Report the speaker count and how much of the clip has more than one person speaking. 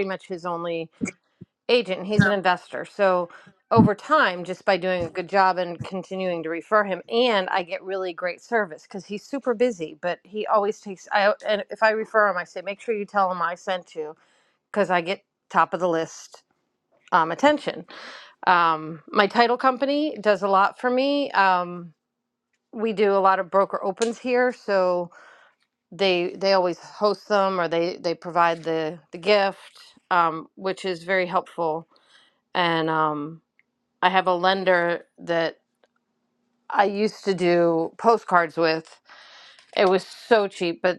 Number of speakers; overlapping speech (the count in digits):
1, no overlap